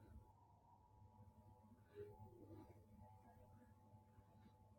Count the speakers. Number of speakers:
zero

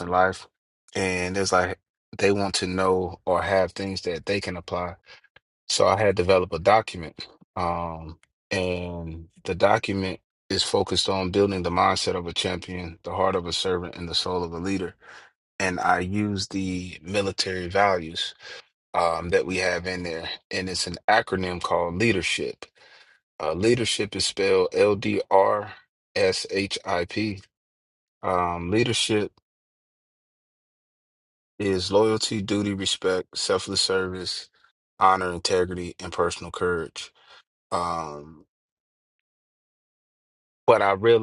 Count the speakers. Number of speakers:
one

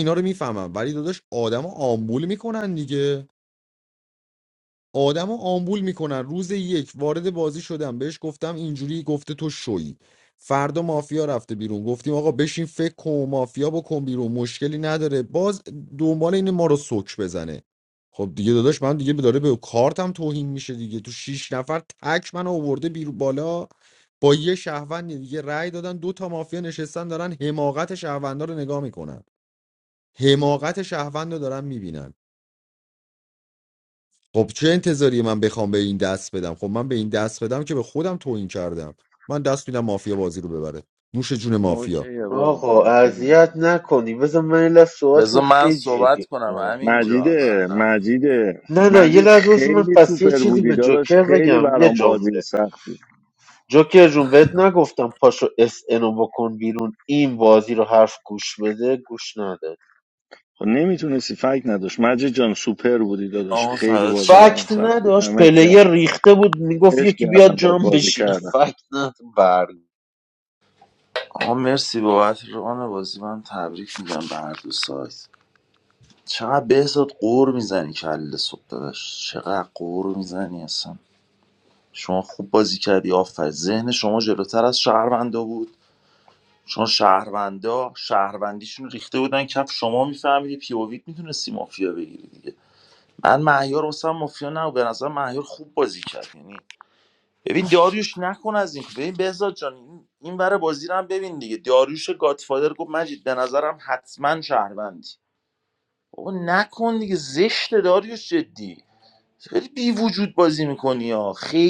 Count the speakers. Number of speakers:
four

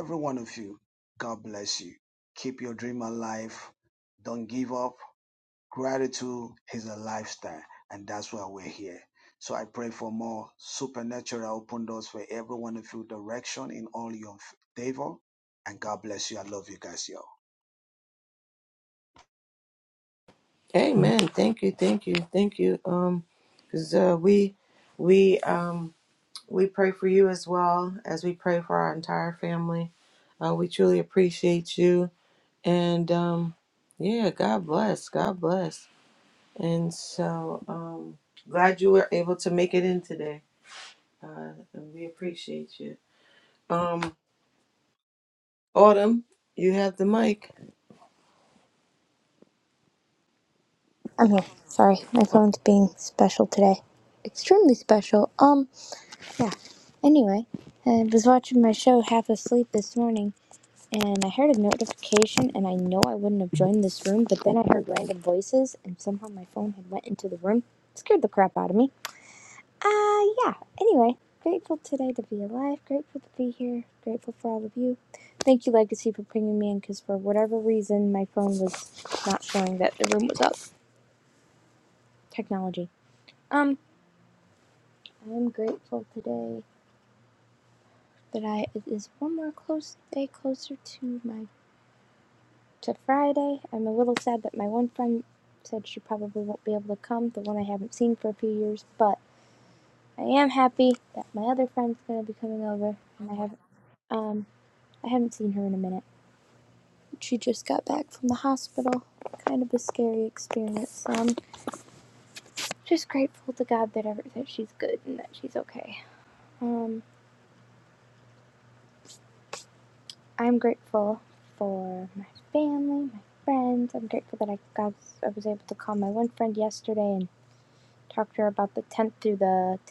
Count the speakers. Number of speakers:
three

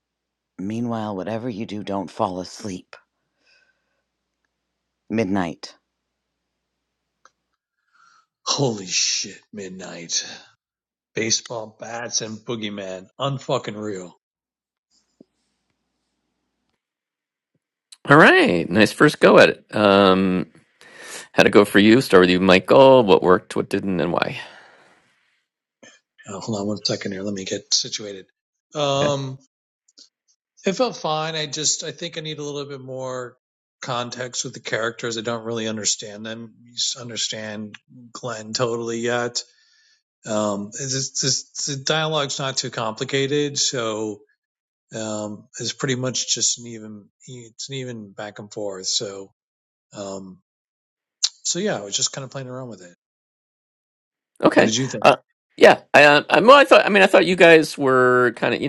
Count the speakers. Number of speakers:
three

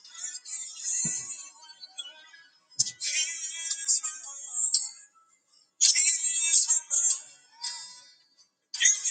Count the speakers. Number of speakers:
zero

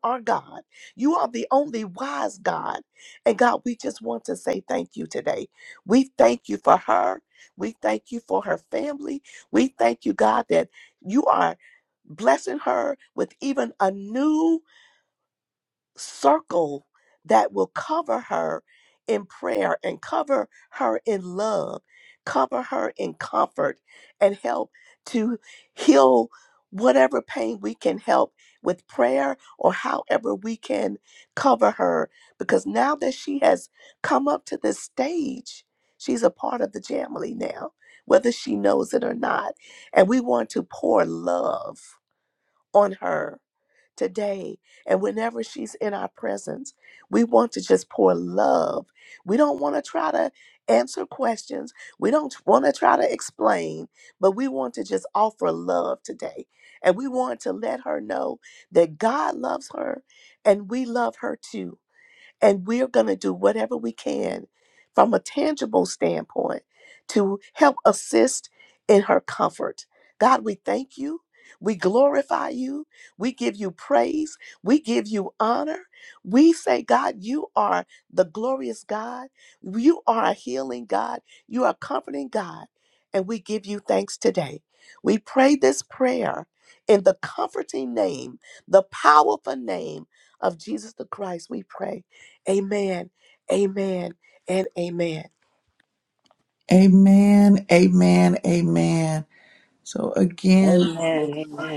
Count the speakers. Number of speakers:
three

